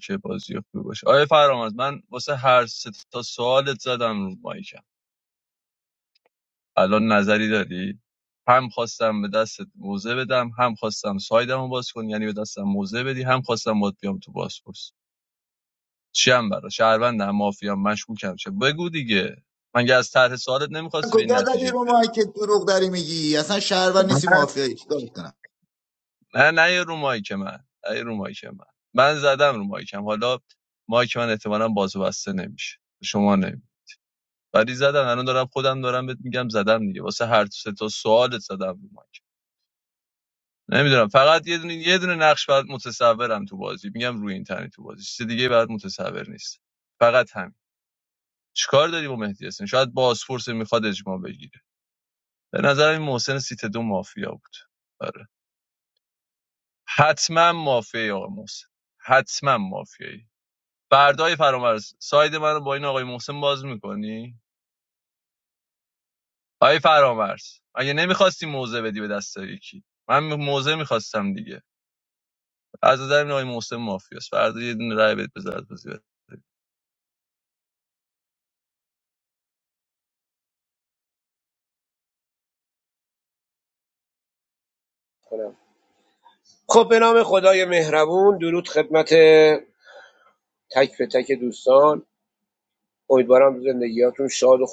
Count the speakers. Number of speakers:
three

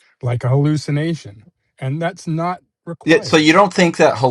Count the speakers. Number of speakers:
two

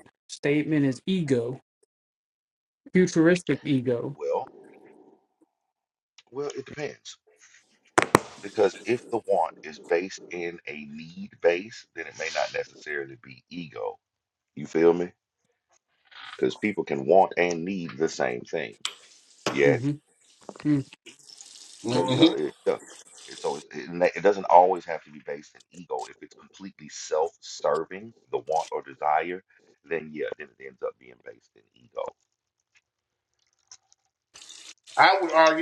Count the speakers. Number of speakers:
three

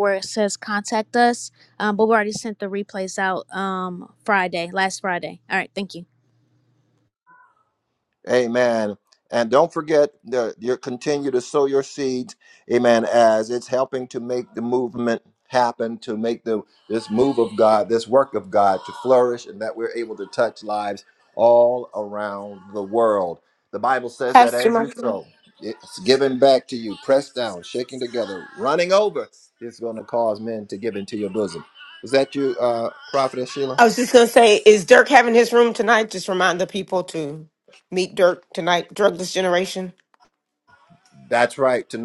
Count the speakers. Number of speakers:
three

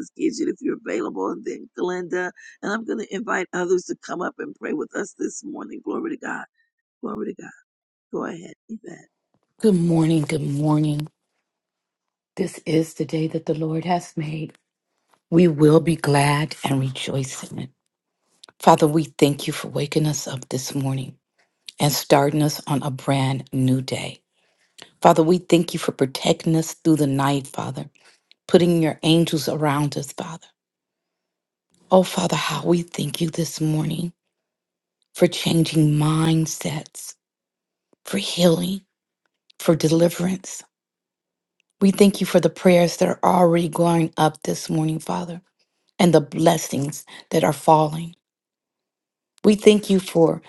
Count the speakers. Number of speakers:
two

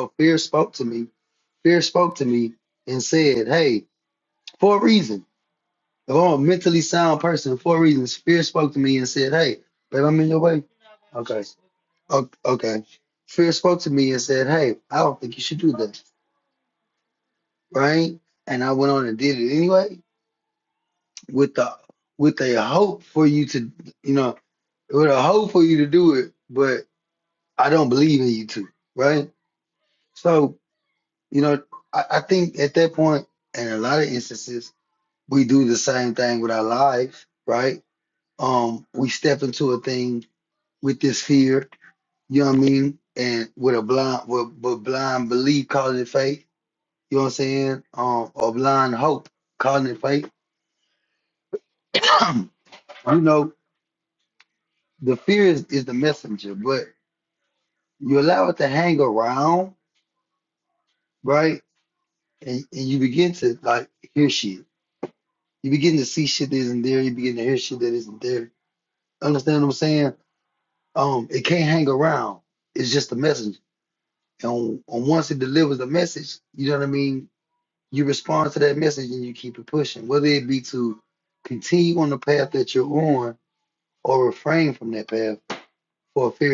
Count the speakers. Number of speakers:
one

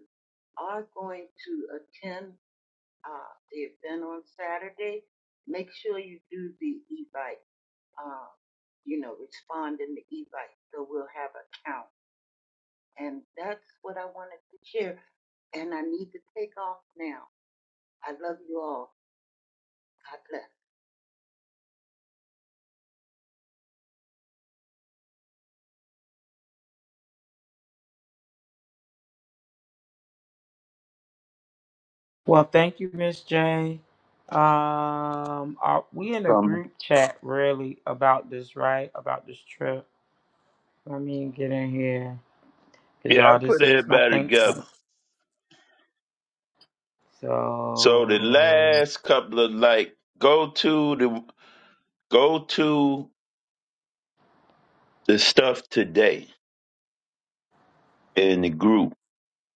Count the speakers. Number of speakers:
three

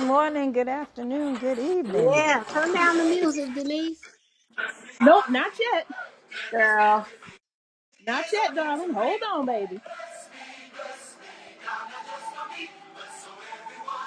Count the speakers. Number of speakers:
three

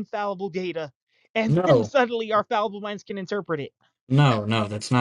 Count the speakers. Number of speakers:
two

